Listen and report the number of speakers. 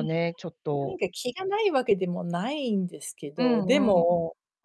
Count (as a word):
two